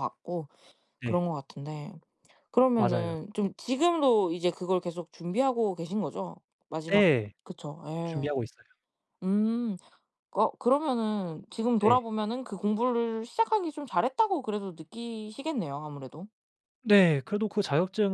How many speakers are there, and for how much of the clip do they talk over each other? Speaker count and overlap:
2, about 5%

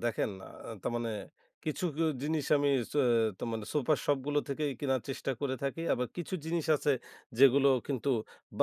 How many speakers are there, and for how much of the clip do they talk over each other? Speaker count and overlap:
1, no overlap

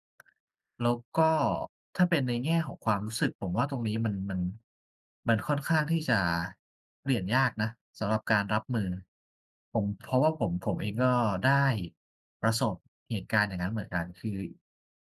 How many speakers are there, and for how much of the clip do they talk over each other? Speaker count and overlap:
1, no overlap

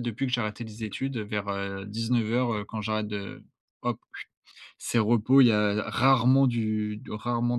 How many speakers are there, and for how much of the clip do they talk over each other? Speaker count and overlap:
1, no overlap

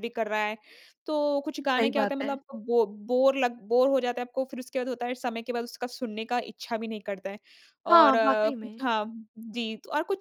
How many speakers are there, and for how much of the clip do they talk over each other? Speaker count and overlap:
2, about 9%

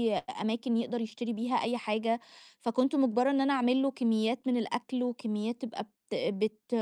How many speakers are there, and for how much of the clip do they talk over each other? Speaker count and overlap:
1, no overlap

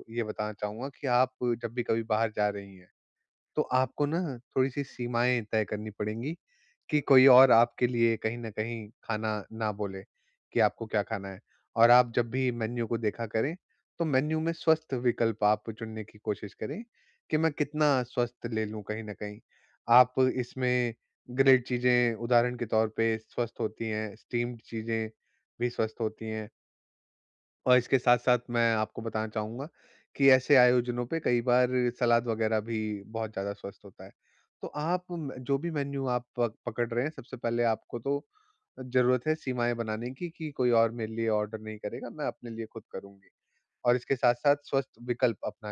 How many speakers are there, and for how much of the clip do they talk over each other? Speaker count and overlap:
1, no overlap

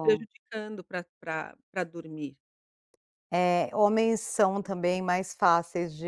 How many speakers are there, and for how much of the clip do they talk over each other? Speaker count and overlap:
2, about 4%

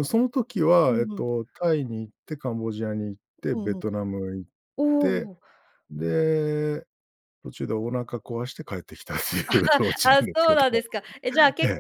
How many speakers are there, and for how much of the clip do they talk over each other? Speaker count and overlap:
2, about 17%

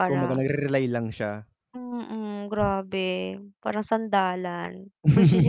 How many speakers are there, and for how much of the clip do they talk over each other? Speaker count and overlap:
2, about 6%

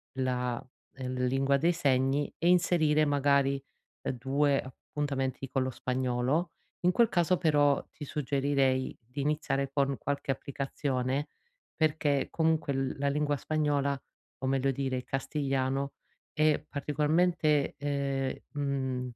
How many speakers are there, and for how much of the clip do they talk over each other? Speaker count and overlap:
1, no overlap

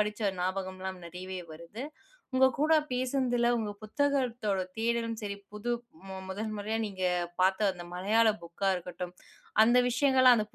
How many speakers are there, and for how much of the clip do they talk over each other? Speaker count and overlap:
1, no overlap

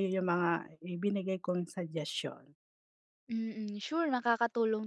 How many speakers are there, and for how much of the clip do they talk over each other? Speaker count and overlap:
2, no overlap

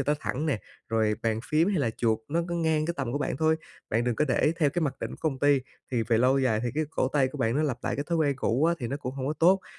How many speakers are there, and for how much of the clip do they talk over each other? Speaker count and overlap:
1, no overlap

